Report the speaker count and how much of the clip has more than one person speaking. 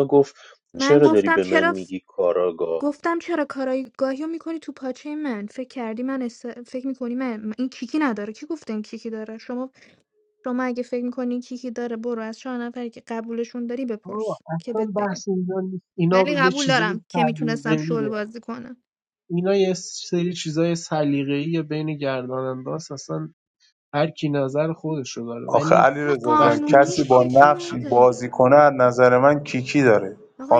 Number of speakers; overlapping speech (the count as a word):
four, about 22%